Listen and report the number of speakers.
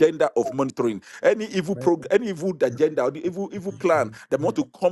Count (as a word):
one